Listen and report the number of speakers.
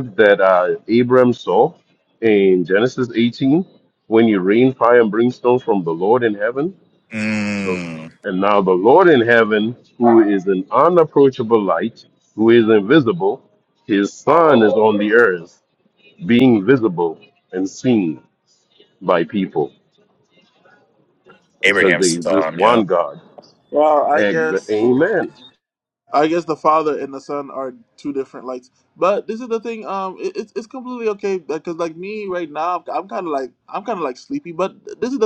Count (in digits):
3